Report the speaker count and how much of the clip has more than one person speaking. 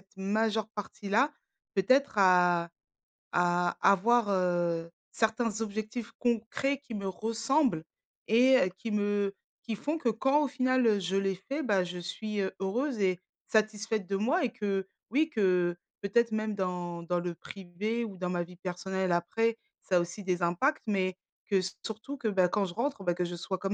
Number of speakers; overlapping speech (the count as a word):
one, no overlap